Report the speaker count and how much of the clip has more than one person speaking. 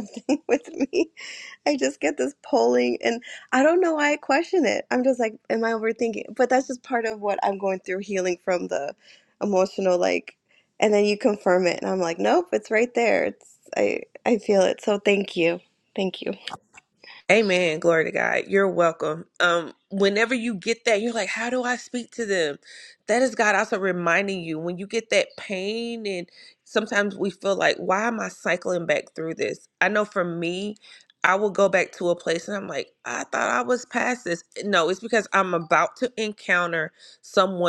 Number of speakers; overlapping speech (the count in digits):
2, no overlap